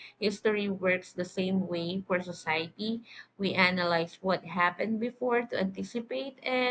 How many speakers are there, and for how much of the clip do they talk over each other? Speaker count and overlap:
1, no overlap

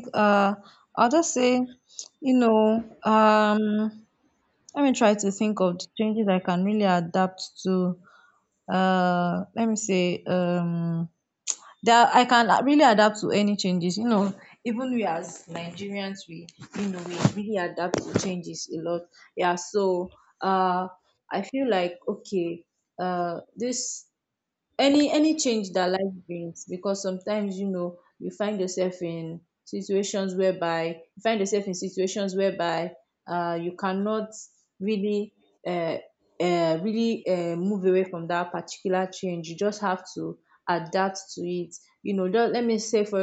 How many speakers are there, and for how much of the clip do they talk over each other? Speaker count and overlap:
1, no overlap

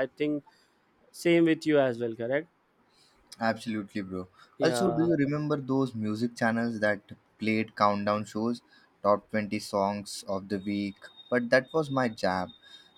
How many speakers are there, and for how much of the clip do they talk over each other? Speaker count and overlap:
2, about 4%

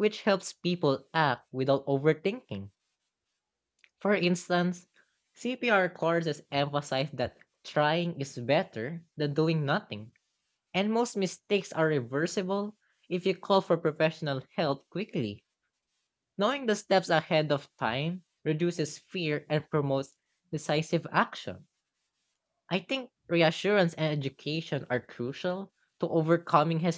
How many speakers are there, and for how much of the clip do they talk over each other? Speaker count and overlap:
1, no overlap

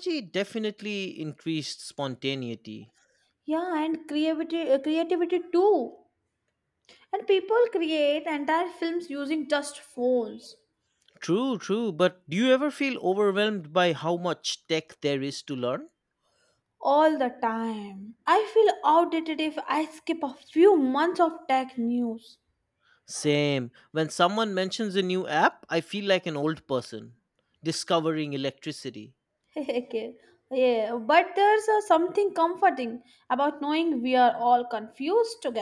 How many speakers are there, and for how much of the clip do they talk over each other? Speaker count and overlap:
2, no overlap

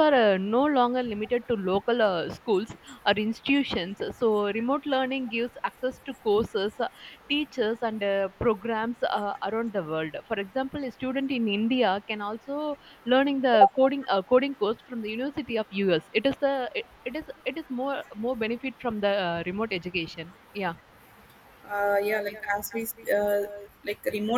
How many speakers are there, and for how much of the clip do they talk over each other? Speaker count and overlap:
2, no overlap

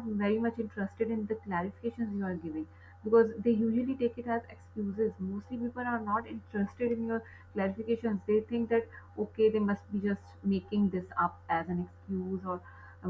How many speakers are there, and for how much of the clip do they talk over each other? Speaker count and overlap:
1, no overlap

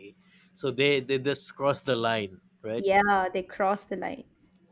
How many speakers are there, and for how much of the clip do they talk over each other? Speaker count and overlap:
2, about 1%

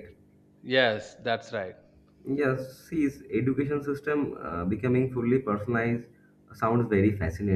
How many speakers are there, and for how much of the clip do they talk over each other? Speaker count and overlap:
2, no overlap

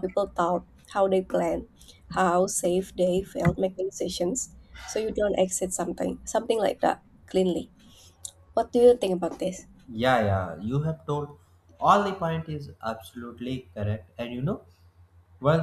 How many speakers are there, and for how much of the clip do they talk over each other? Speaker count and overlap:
2, no overlap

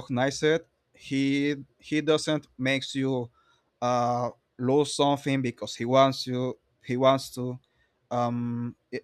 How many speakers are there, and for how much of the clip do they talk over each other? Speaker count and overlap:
1, no overlap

